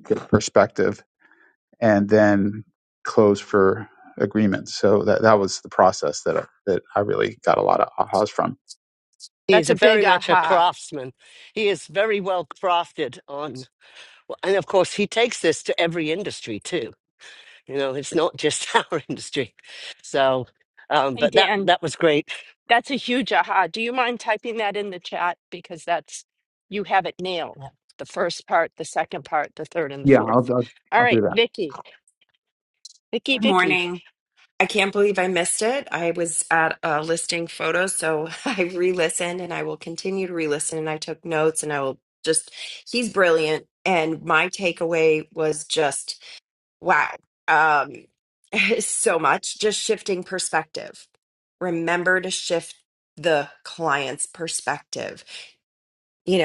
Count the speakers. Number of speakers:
four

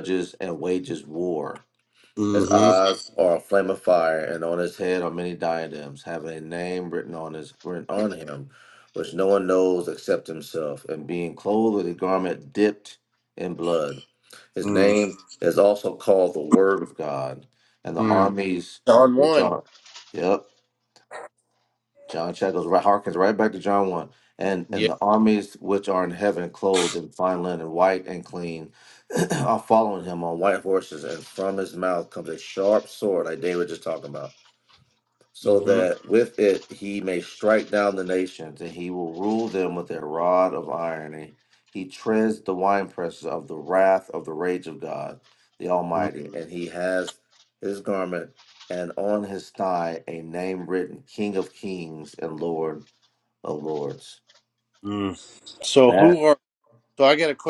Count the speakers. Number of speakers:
two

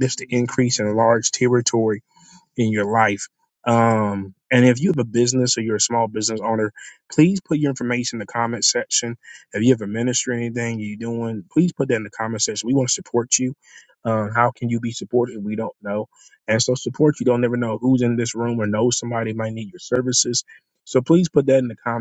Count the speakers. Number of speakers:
one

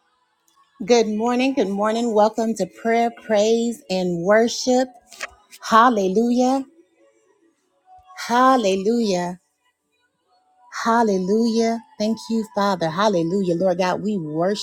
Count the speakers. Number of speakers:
one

